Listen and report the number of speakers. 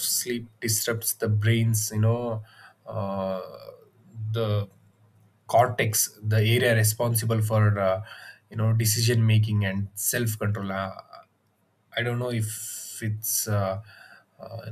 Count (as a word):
one